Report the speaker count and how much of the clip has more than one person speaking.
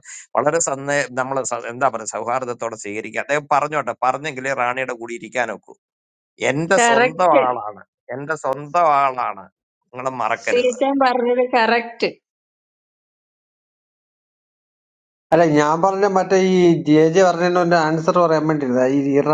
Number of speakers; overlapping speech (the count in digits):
3, about 5%